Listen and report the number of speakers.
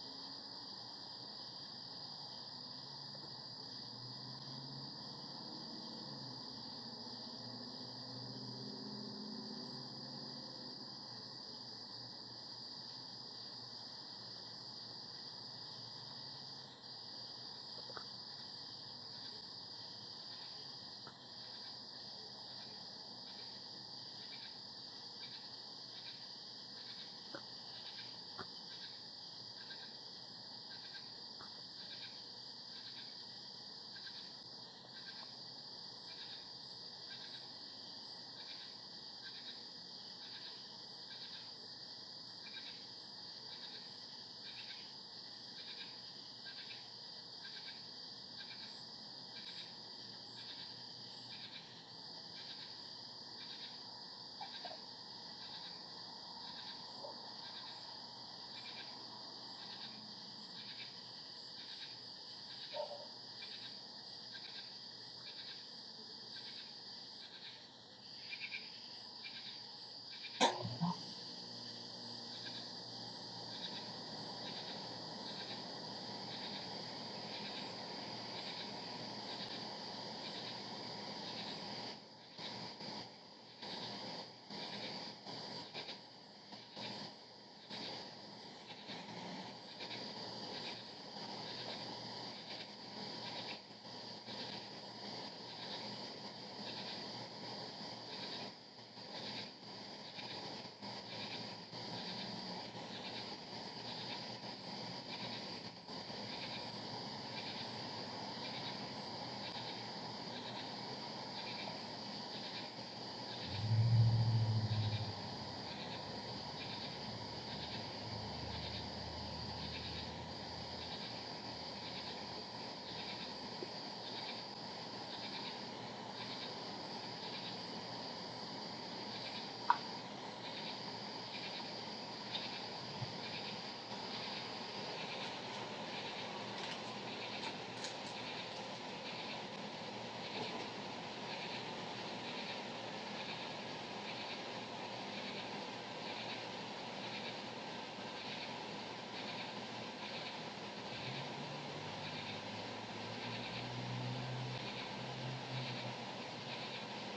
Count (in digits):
0